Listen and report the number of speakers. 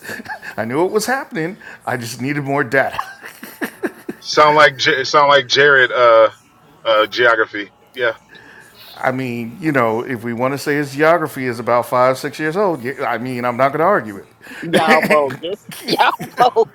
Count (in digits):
3